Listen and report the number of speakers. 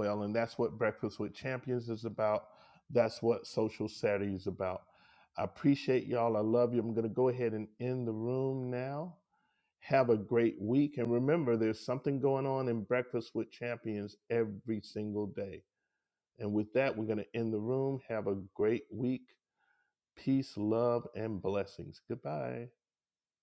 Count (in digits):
1